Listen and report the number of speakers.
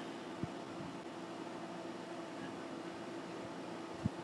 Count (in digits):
0